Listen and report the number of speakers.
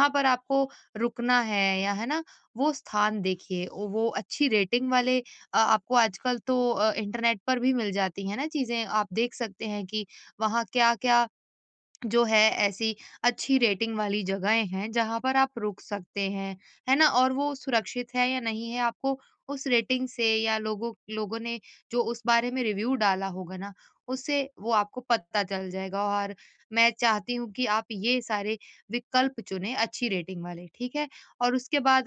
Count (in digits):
1